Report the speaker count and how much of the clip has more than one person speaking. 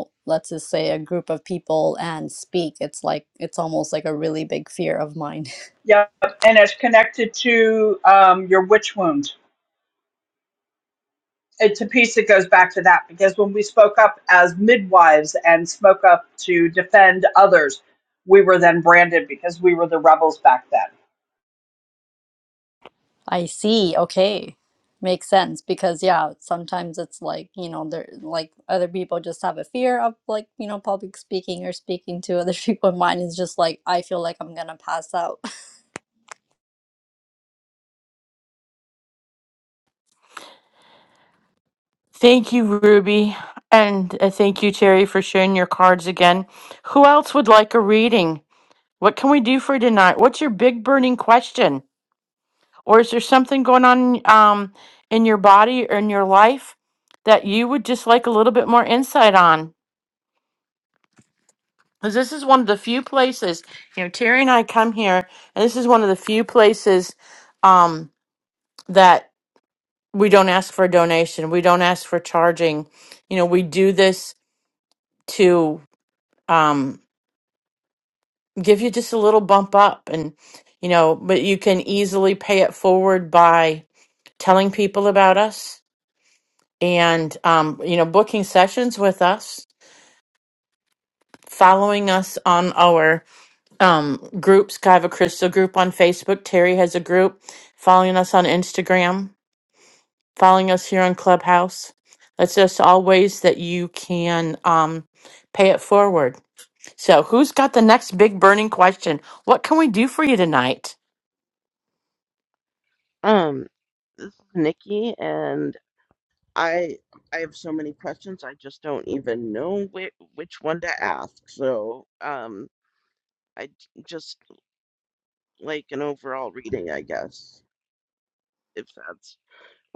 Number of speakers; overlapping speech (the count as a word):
four, no overlap